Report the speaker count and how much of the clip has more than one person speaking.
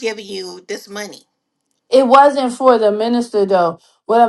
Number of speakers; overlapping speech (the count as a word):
two, no overlap